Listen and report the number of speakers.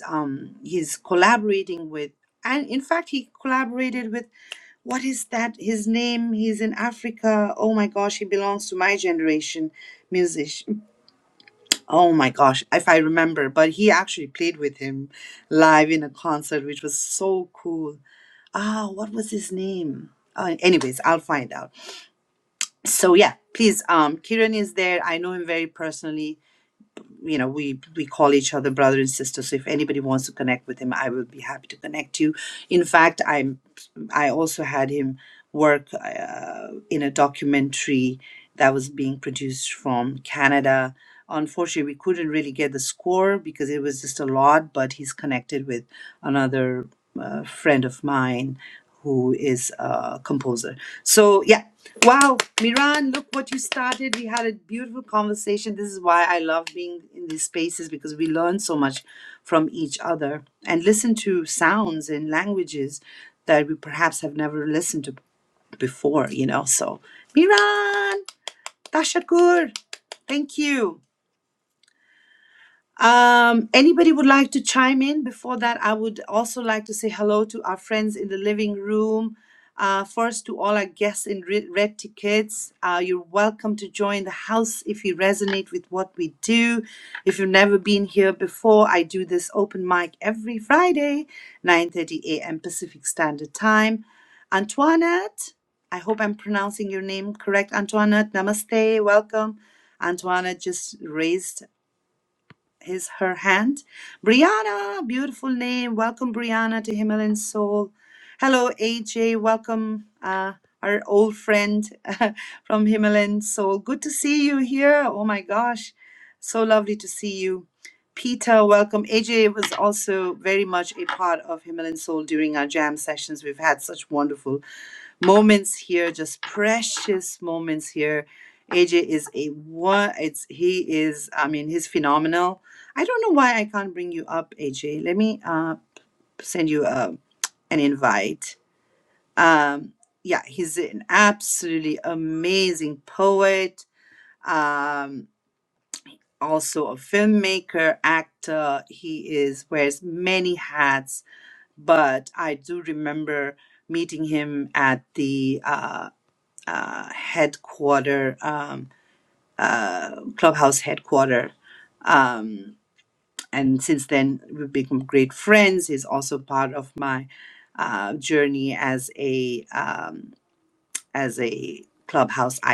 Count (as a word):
one